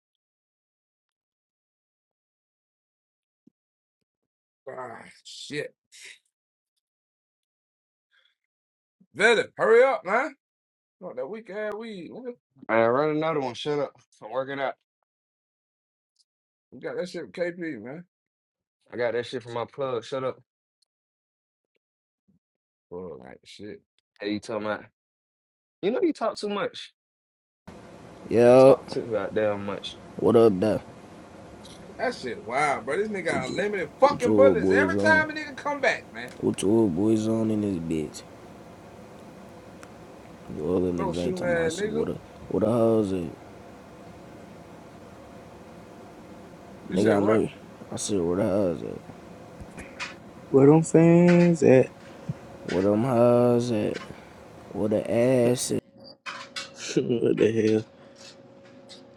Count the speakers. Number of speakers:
4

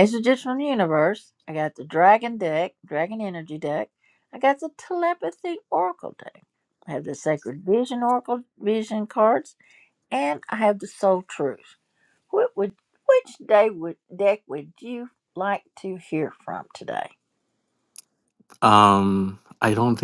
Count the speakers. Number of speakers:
2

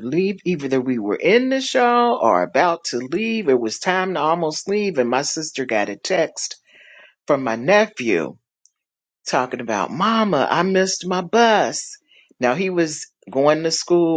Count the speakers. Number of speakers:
1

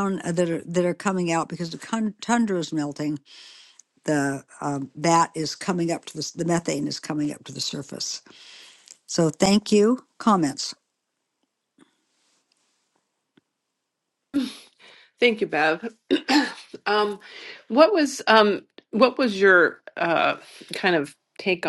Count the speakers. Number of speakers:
2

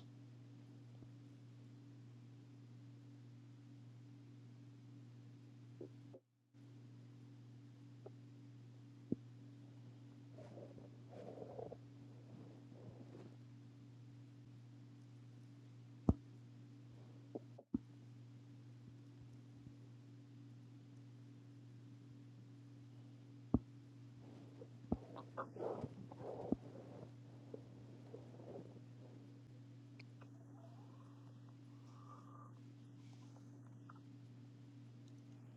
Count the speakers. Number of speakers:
0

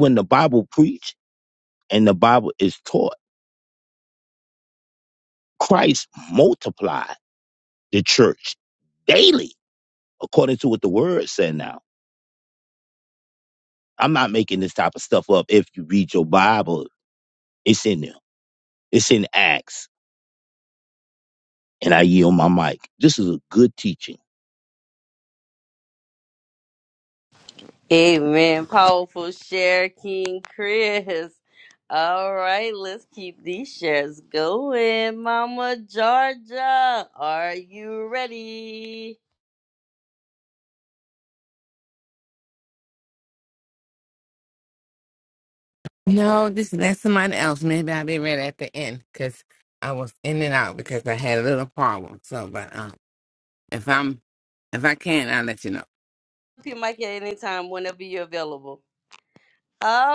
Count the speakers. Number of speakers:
3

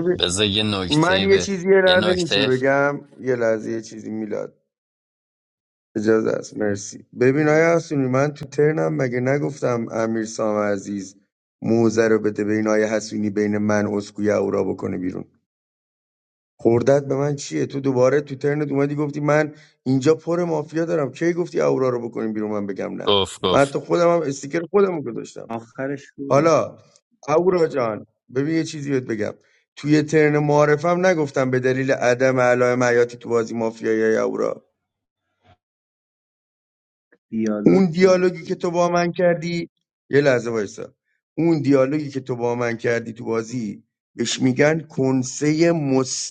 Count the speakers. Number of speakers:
3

